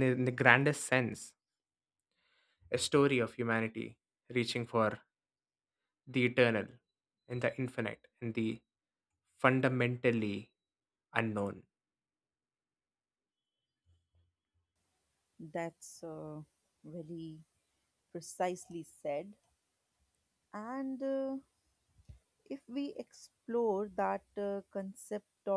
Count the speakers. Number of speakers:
2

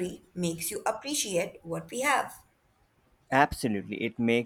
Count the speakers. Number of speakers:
2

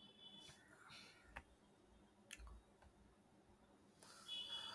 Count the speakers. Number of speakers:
0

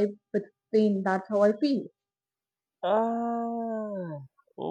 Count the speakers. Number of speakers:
2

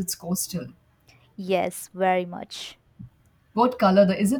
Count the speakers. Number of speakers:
2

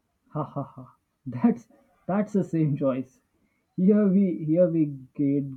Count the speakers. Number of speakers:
1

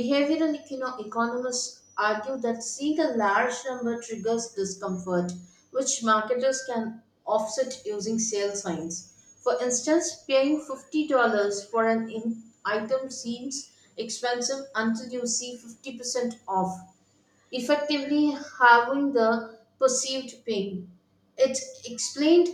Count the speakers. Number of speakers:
1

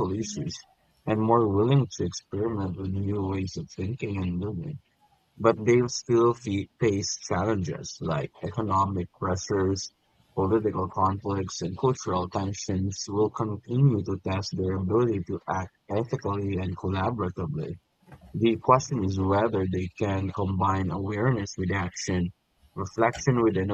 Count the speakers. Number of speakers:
1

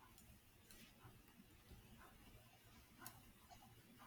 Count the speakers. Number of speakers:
0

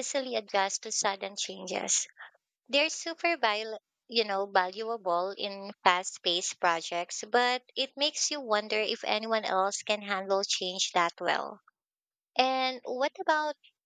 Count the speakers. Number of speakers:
1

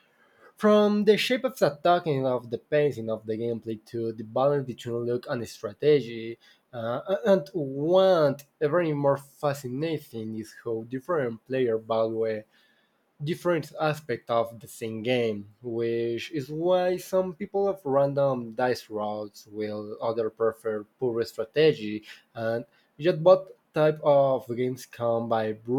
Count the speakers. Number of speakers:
1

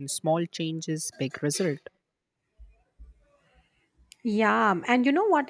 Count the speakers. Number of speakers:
2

